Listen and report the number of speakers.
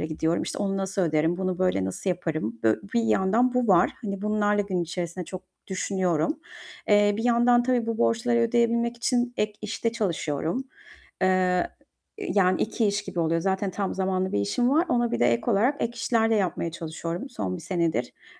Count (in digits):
1